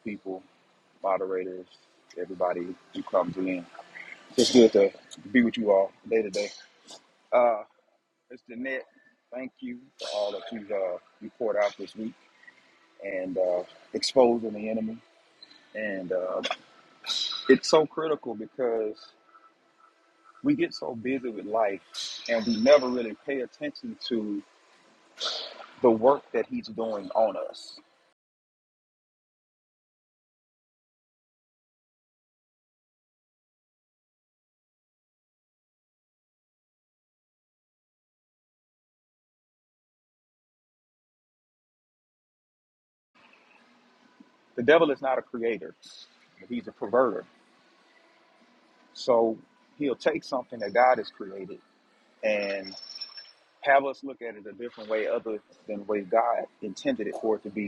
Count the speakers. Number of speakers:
one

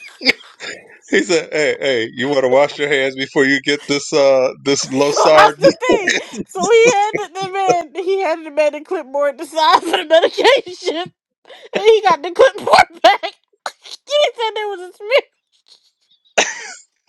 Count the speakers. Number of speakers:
two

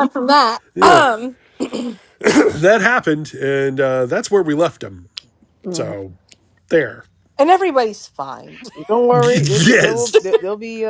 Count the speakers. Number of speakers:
three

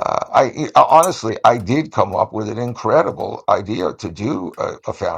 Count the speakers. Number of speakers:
one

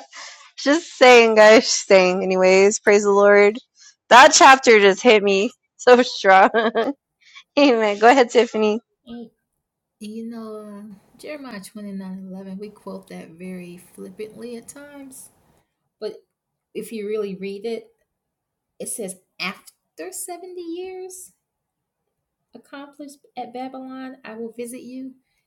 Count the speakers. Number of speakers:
two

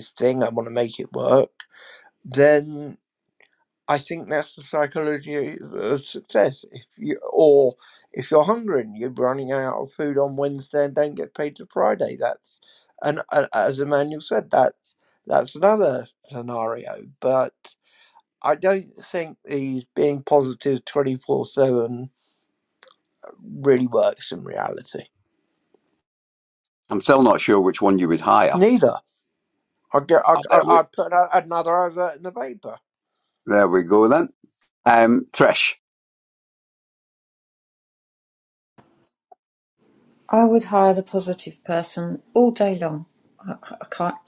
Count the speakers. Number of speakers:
three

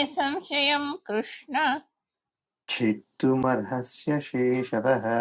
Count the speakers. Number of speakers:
two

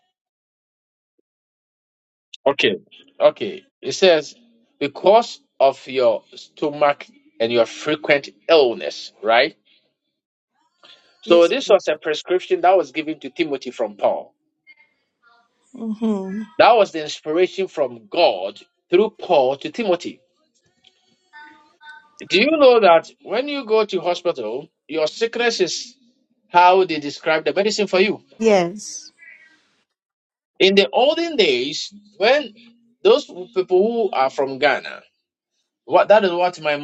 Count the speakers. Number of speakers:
two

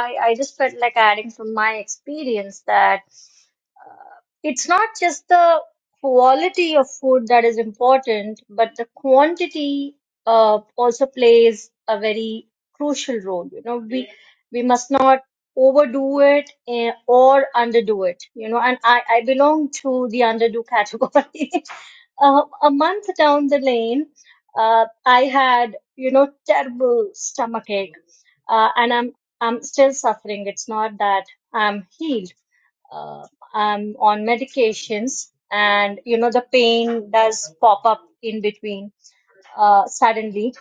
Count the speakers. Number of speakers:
one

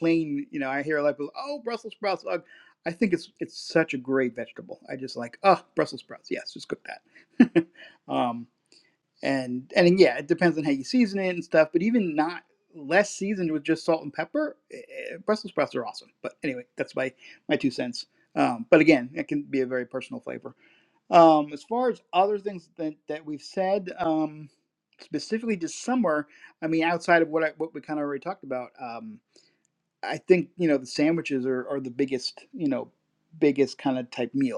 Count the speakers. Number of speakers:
one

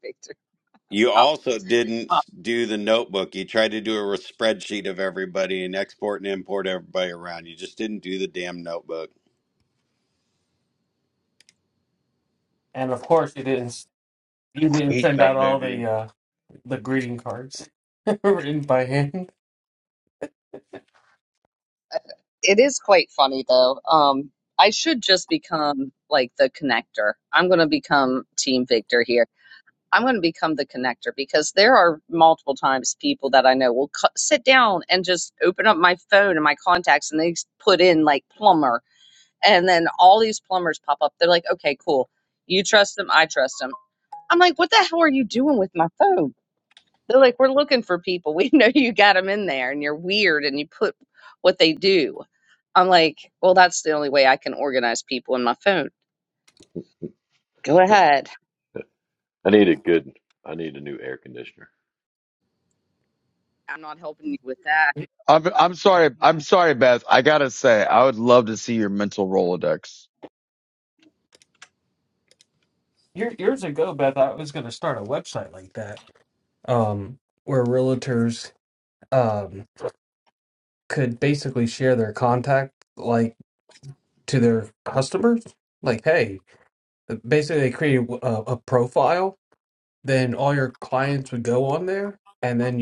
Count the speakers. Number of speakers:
five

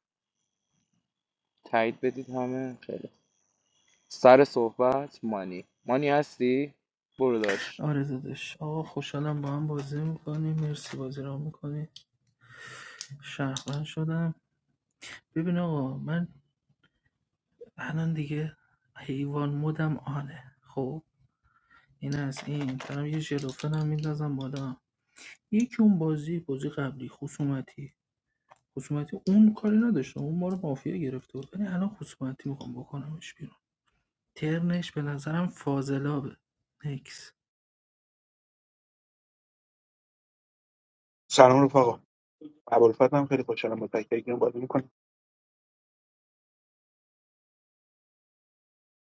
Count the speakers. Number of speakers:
three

